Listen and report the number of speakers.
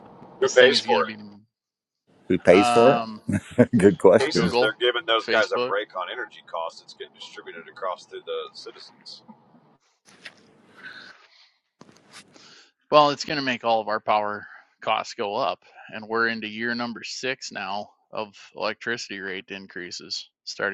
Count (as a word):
three